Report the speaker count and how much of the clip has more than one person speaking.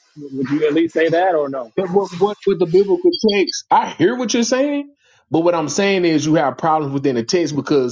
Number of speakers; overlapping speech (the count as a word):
two, no overlap